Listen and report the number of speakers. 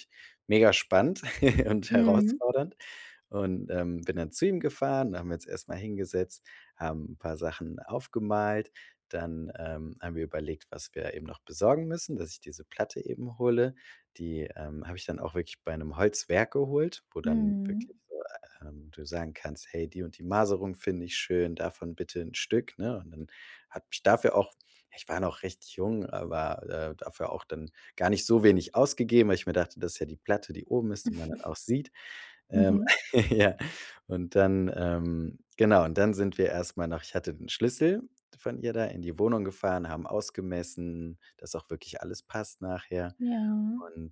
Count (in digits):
2